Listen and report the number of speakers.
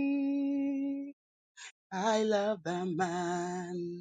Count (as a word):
one